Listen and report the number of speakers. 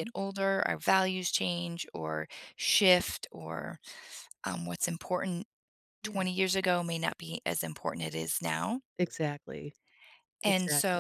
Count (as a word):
two